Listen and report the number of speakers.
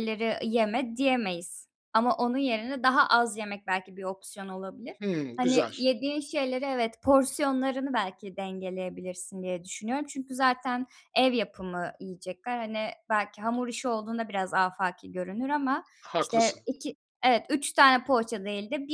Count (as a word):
two